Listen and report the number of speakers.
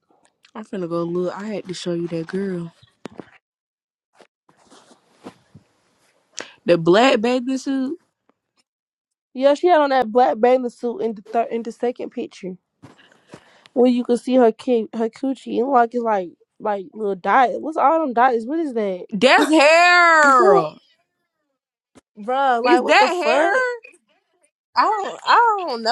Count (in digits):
2